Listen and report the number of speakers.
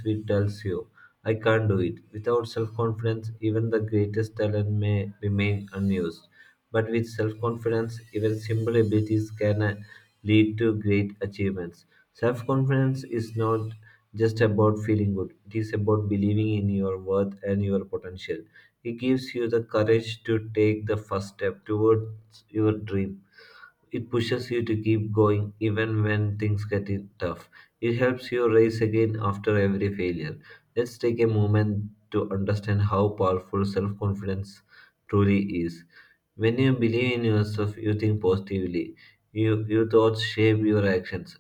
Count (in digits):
1